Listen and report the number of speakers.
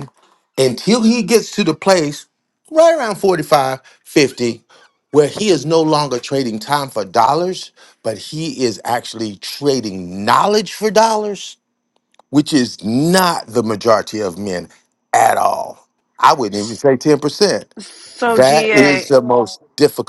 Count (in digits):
2